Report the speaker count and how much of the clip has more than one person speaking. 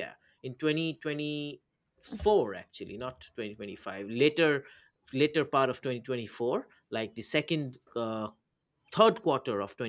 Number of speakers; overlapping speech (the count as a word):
one, no overlap